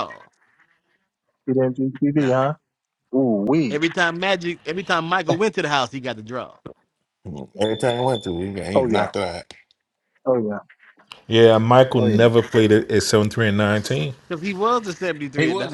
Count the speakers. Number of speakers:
four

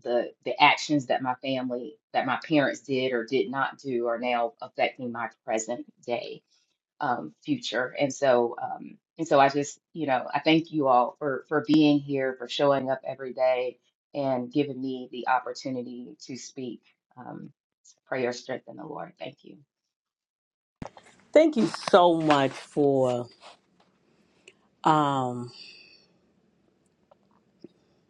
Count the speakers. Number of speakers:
two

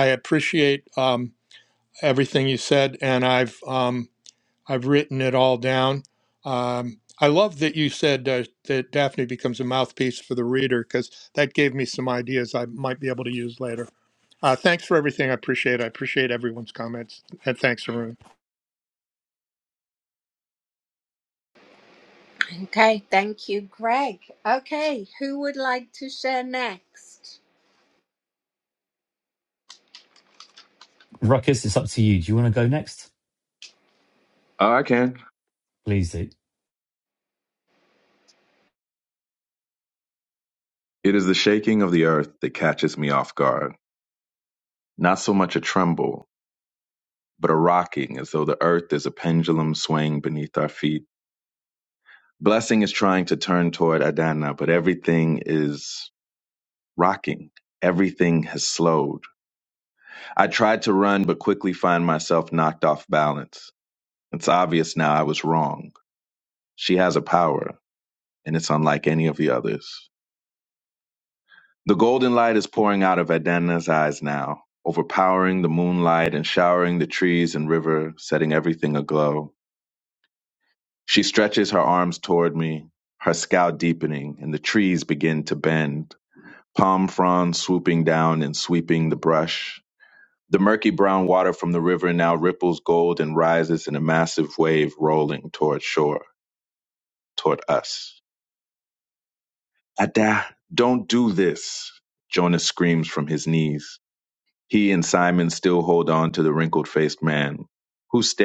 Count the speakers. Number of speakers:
four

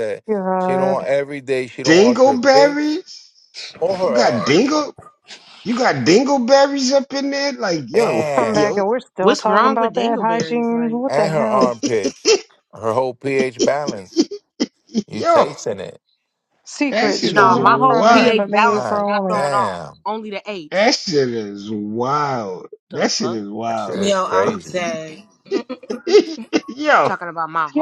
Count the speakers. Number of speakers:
five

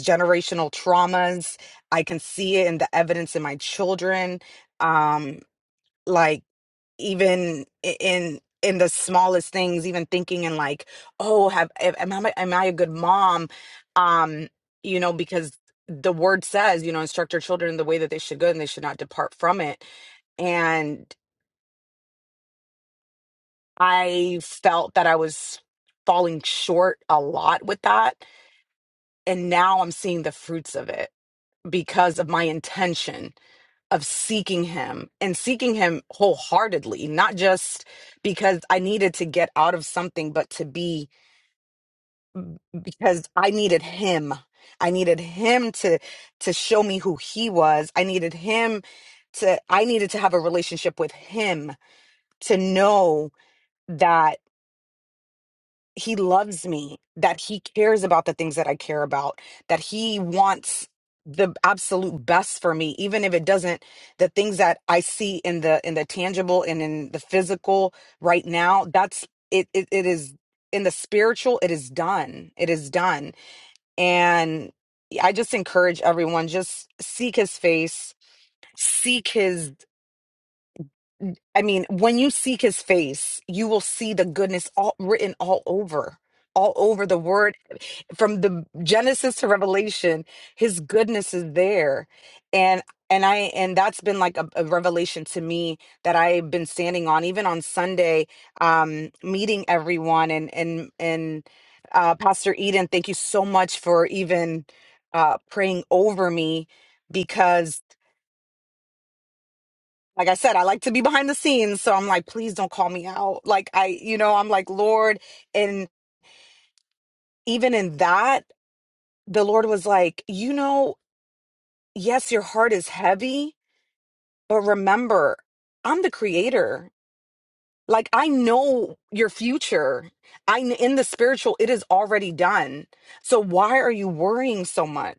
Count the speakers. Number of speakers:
one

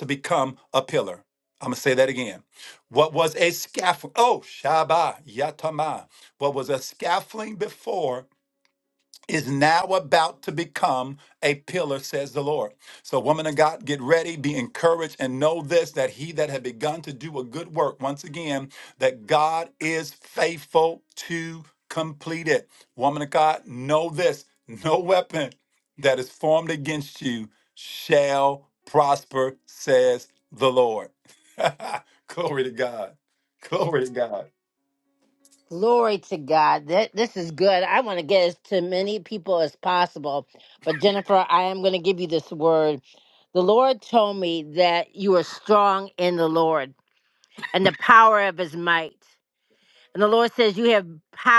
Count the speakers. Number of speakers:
two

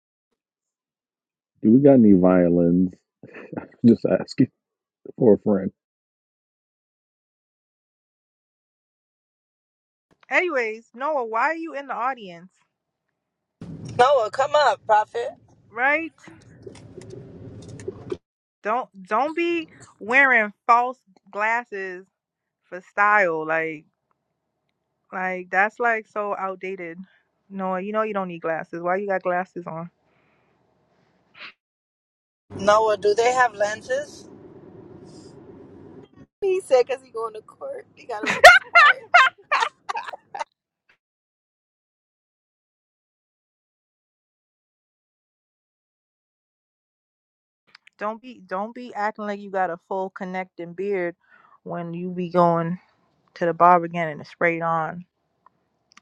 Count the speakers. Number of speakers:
four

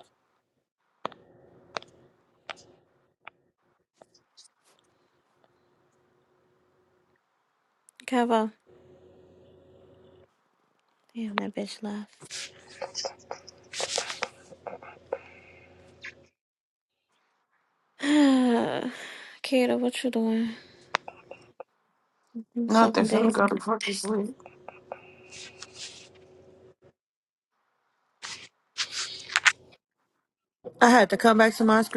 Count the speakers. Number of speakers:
three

